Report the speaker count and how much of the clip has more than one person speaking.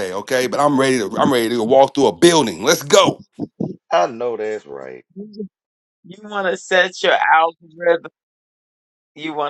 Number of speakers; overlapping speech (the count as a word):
three, no overlap